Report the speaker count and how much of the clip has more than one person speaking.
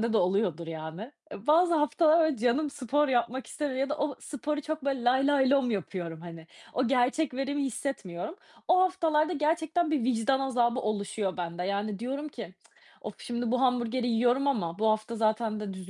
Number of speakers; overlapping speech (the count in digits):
1, no overlap